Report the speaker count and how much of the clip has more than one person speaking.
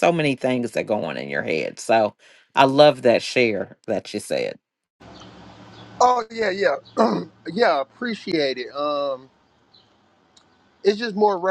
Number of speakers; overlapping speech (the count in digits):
2, no overlap